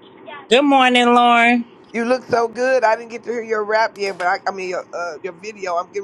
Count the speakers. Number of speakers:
2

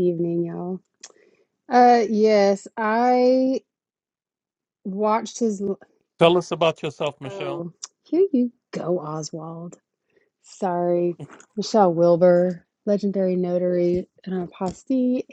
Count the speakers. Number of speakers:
2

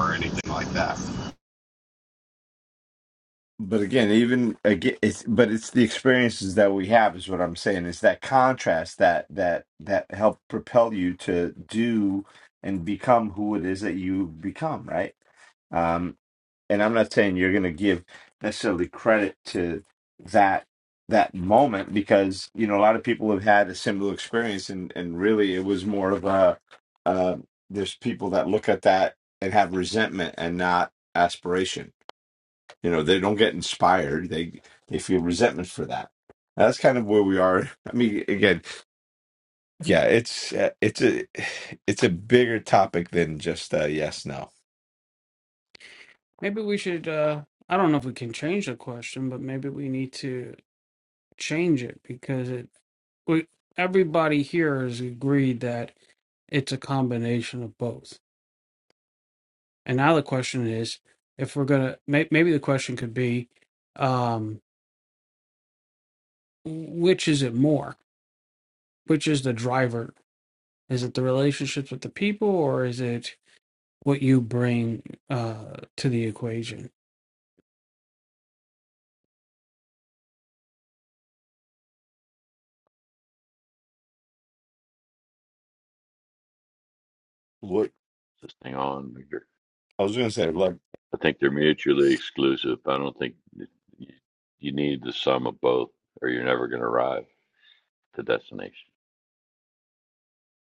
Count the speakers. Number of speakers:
4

